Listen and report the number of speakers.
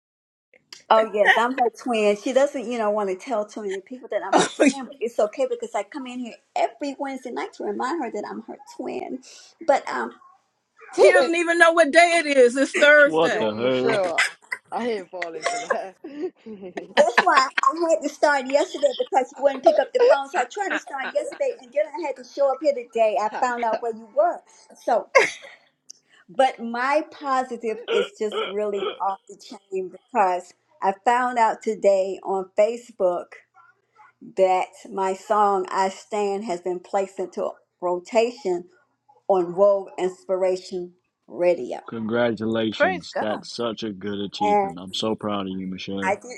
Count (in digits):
4